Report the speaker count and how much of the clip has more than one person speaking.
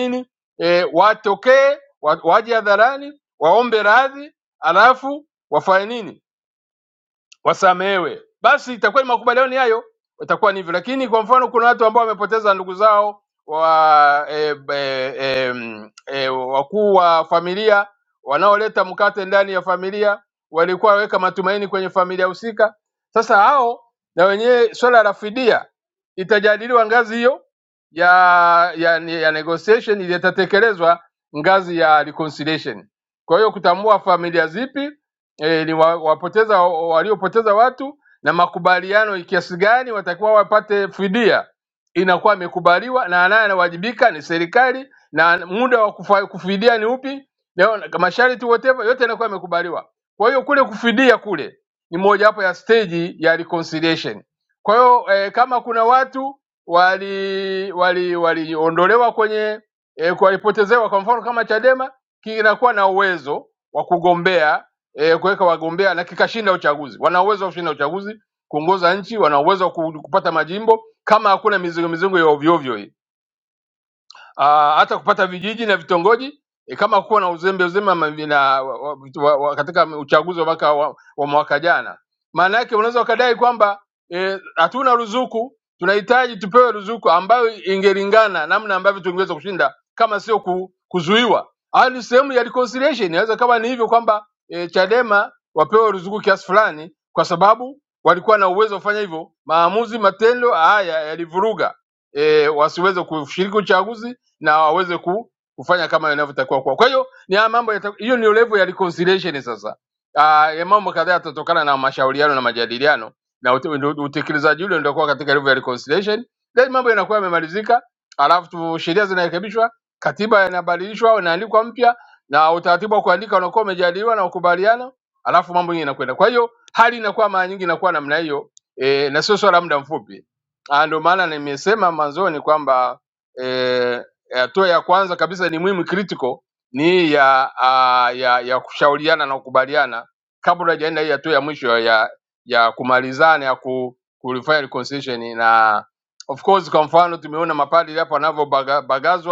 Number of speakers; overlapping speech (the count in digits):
1, no overlap